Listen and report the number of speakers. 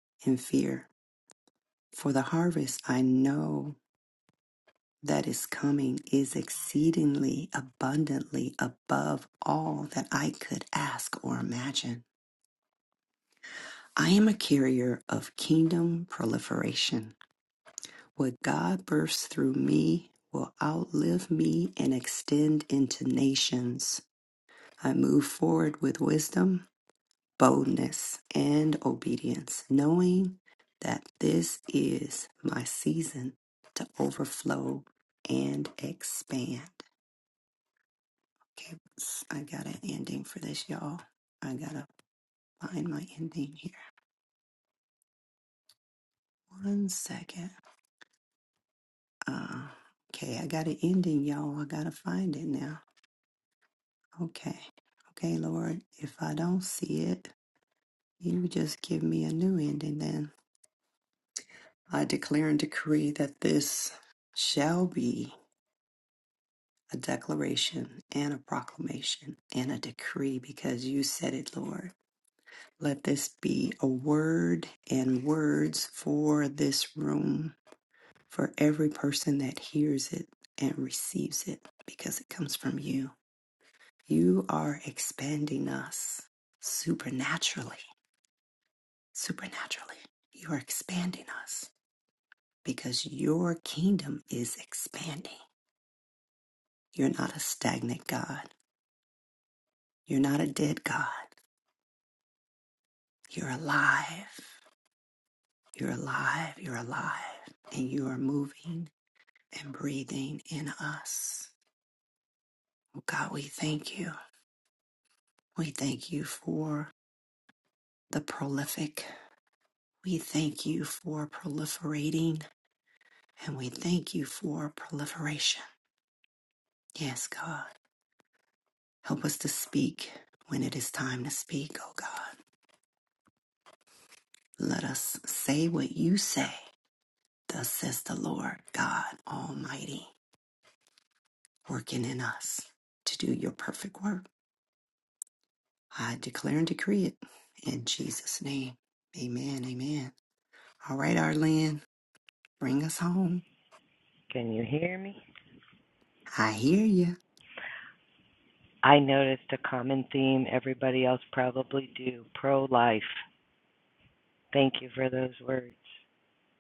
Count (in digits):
2